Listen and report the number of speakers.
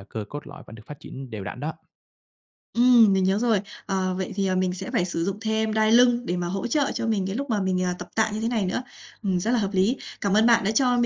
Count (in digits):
2